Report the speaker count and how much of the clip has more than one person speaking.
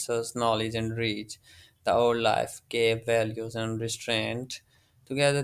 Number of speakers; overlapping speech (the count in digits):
1, no overlap